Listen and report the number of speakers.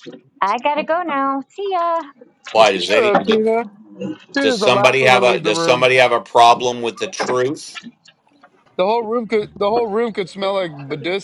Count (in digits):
3